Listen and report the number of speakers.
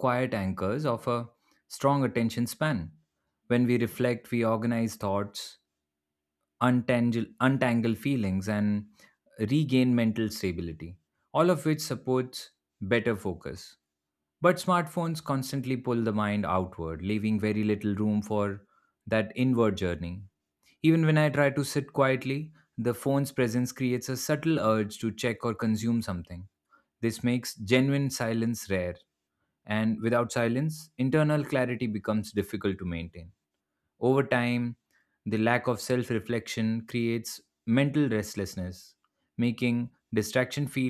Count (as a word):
one